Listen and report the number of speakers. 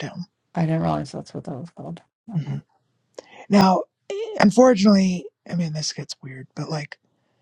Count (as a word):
two